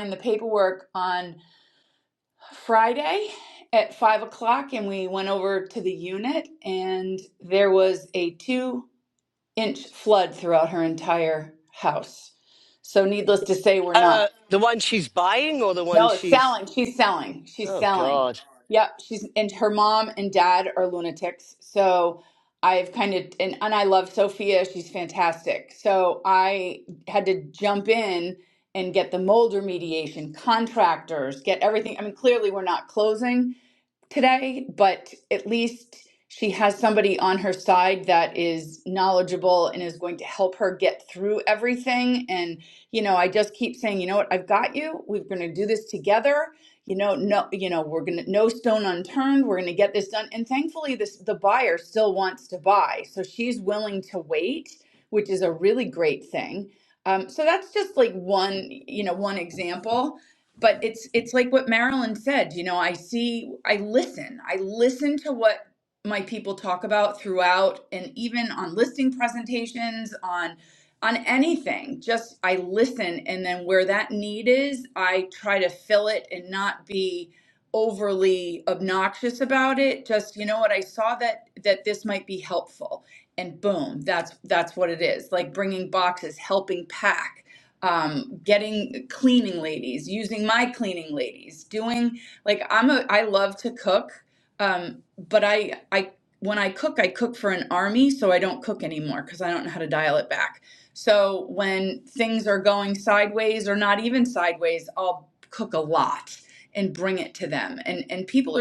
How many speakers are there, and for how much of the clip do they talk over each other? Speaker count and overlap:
2, about 1%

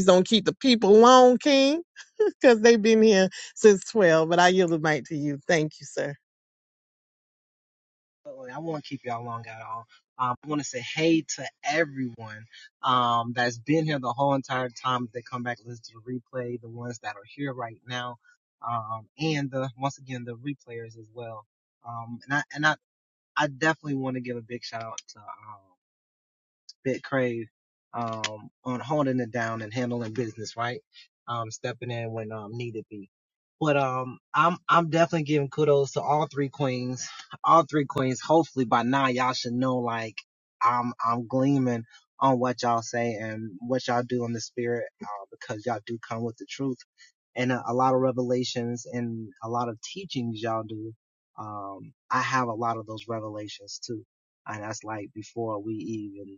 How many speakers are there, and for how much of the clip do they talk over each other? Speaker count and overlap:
2, no overlap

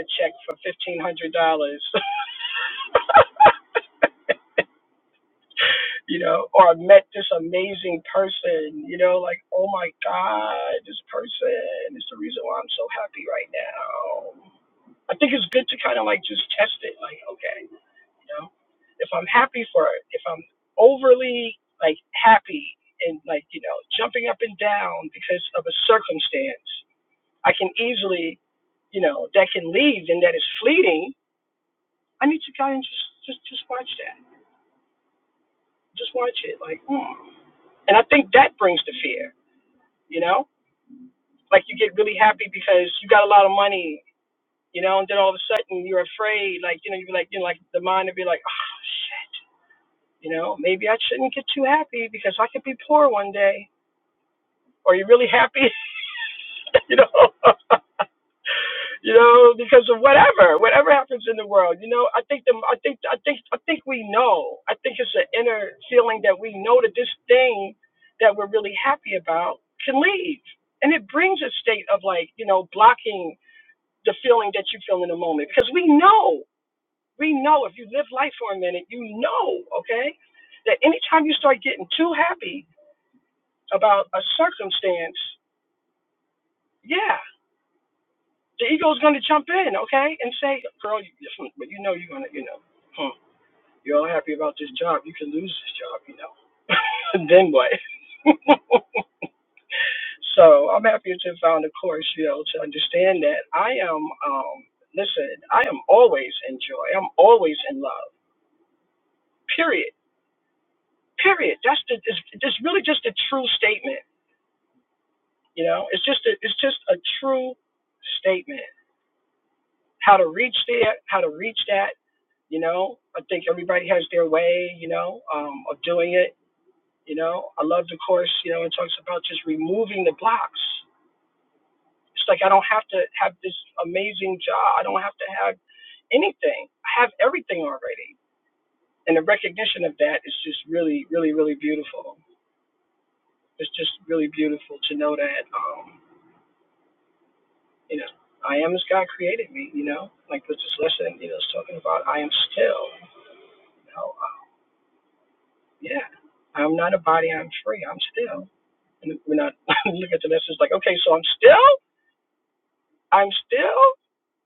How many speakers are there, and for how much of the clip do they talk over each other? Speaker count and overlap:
1, no overlap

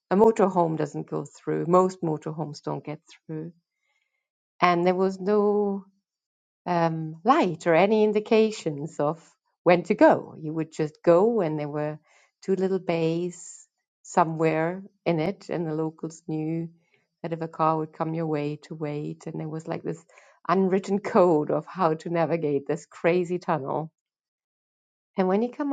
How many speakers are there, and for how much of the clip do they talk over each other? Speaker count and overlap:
1, no overlap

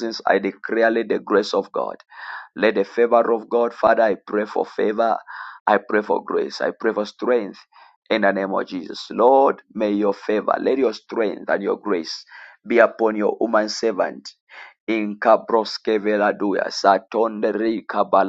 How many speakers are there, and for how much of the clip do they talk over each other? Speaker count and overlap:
1, no overlap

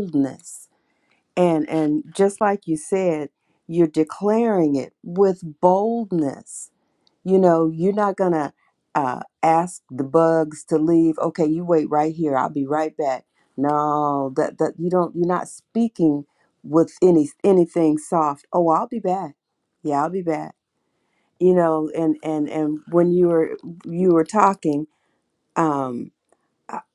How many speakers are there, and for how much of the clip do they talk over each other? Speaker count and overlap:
1, no overlap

